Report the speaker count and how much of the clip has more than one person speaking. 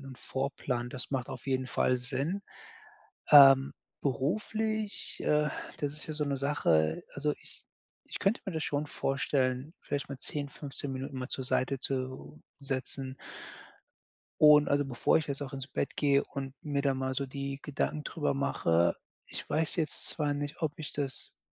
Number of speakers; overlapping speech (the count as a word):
one, no overlap